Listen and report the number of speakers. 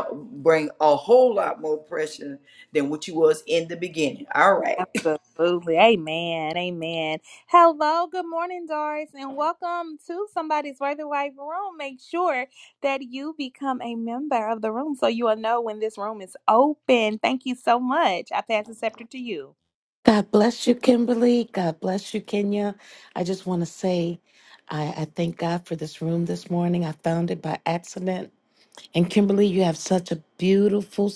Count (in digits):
3